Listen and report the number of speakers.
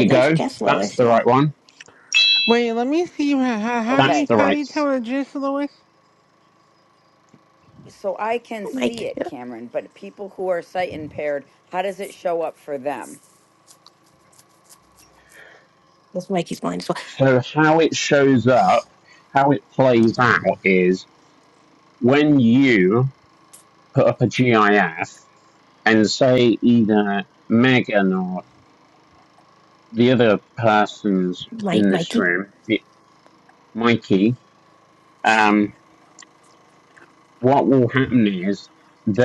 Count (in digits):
4